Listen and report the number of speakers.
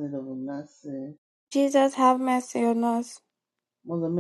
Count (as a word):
two